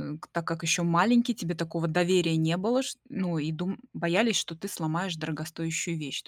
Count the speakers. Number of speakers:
one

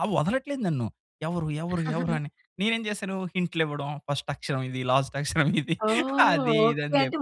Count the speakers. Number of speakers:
two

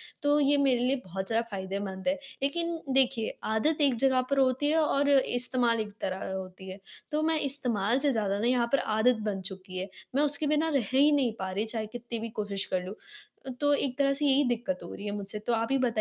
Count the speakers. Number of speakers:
one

